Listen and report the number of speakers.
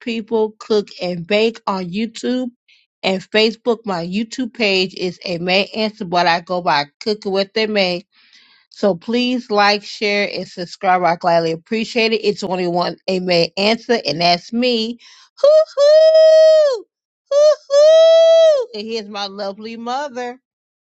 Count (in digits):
1